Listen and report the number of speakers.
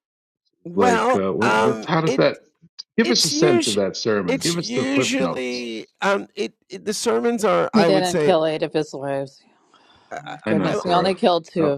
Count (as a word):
three